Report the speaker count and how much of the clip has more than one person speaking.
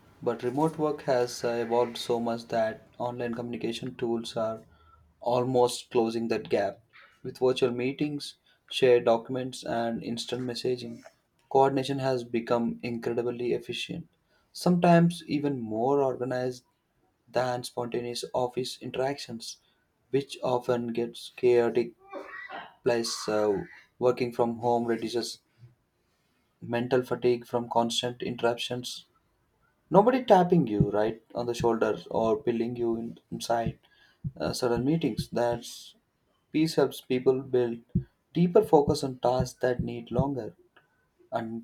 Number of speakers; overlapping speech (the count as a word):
one, no overlap